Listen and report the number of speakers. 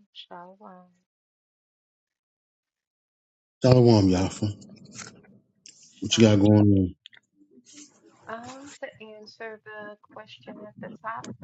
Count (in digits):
2